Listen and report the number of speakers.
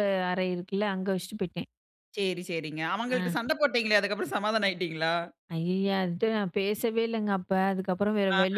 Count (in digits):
2